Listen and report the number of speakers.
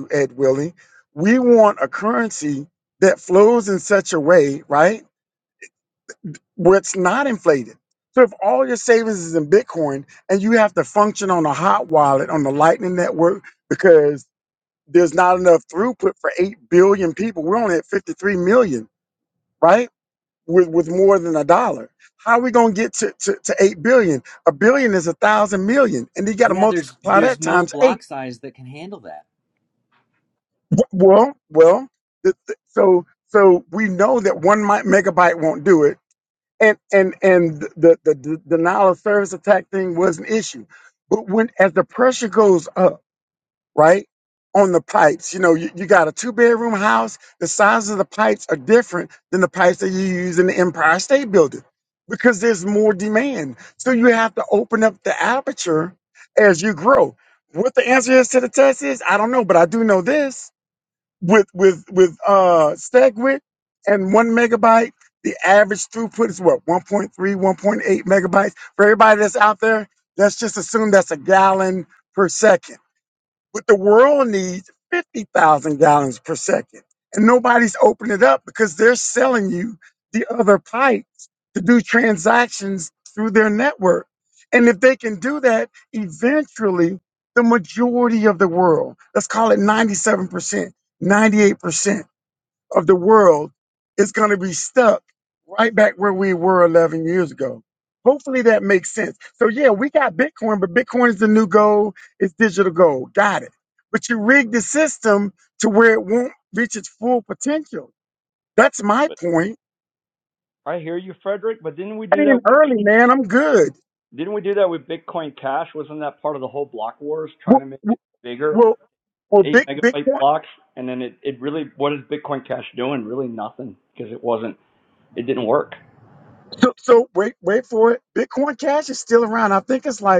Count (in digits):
3